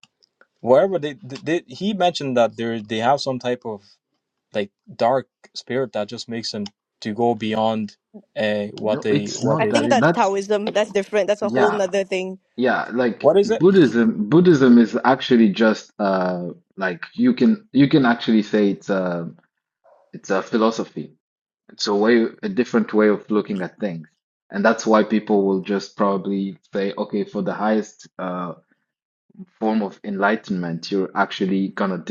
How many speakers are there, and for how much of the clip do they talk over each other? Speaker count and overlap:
three, about 7%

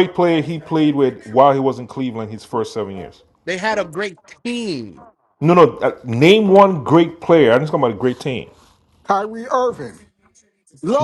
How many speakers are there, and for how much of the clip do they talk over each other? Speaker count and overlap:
three, under 1%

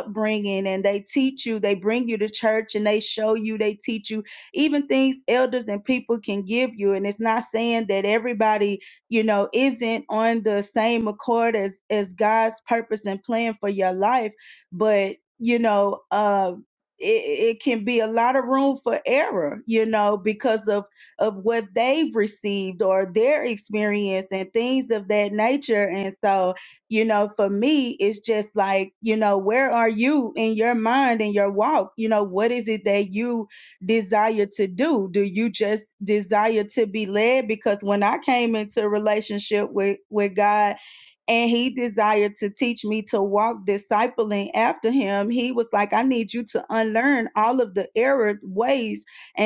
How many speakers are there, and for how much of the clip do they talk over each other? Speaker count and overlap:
one, no overlap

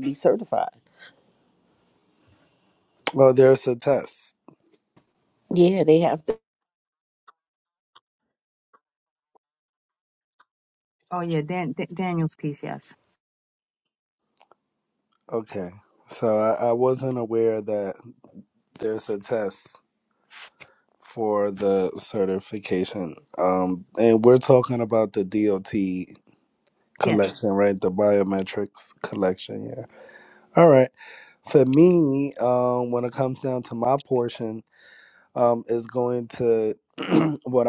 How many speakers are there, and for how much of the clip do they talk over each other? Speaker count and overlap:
three, under 1%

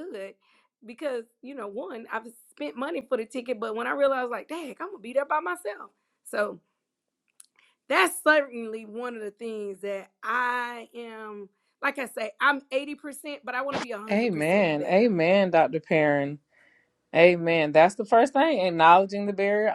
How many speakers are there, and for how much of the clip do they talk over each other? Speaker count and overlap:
two, about 5%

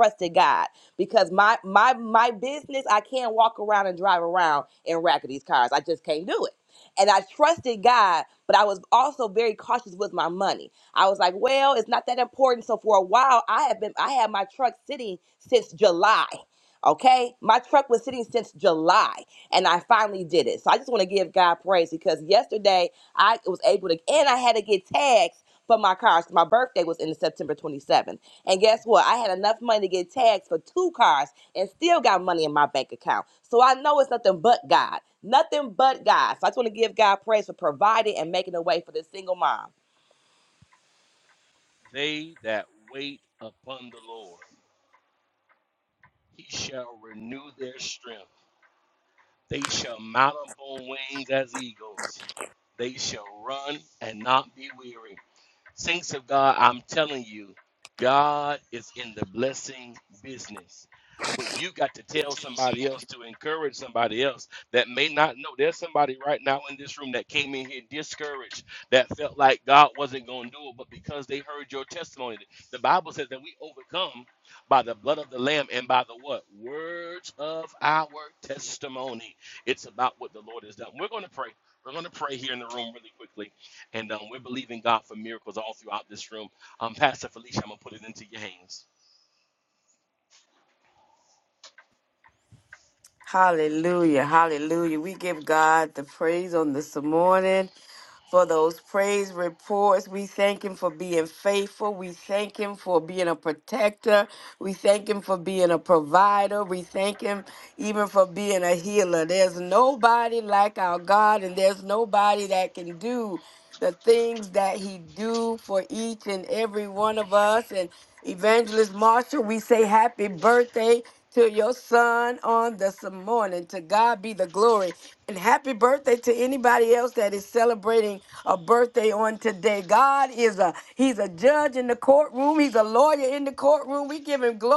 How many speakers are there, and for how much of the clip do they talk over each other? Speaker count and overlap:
three, no overlap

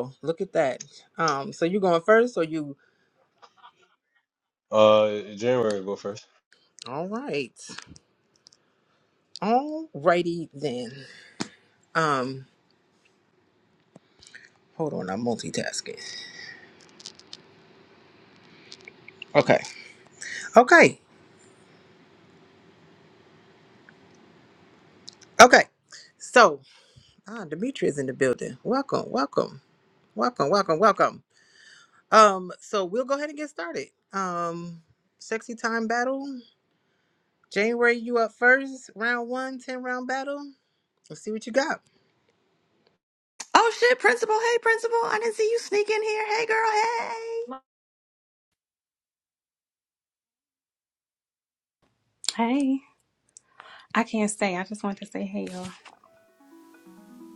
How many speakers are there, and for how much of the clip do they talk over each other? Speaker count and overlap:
four, no overlap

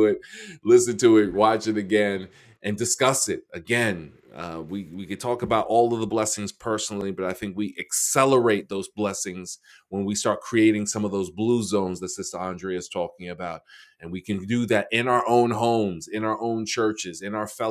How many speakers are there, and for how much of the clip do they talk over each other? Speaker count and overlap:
one, no overlap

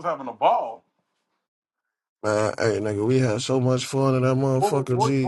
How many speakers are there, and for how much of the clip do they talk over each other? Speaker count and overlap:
two, about 13%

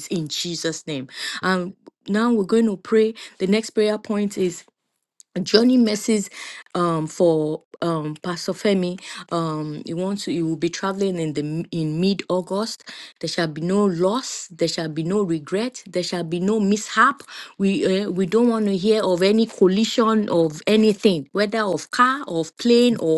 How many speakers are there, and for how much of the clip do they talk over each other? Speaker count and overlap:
one, no overlap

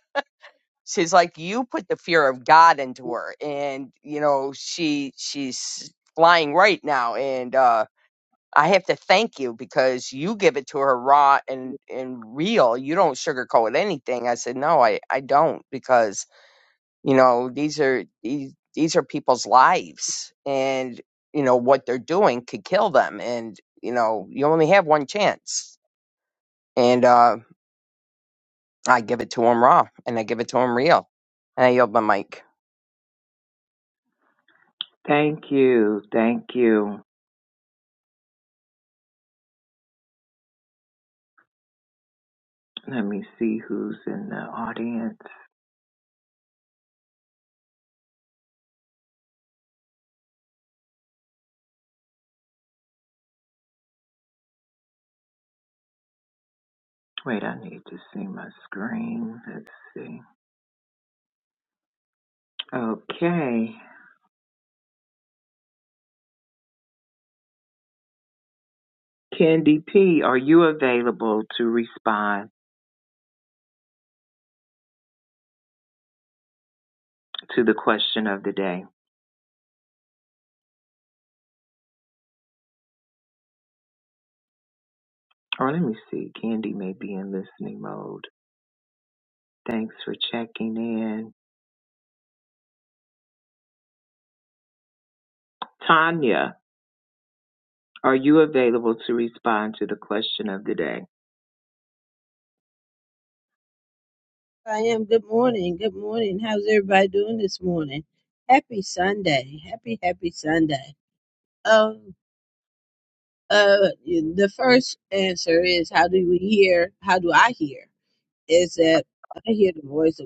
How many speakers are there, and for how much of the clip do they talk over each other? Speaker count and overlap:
three, no overlap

